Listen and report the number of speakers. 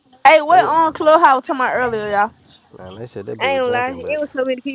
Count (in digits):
3